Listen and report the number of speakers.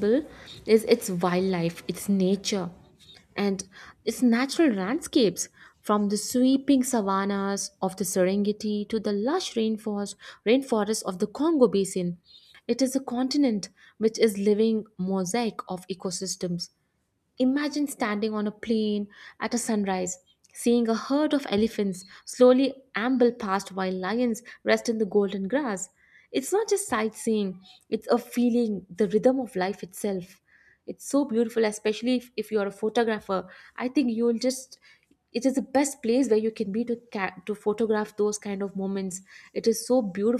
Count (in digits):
1